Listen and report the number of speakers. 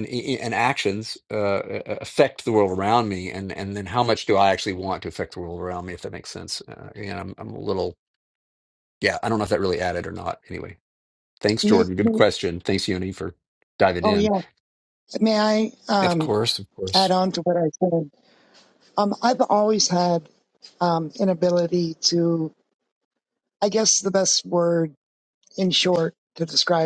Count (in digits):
2